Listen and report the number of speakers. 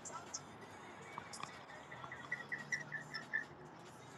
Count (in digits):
0